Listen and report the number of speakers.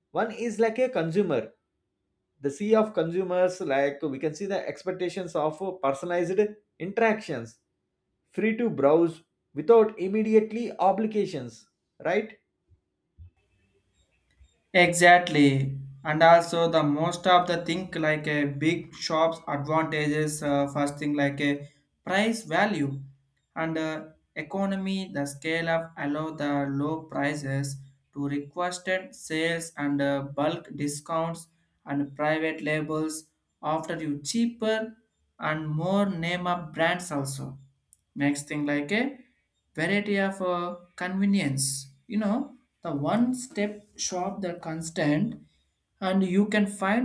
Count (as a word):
two